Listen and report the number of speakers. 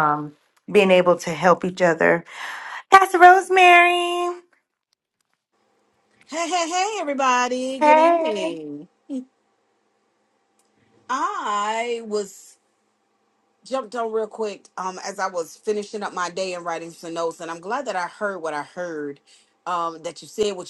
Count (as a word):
two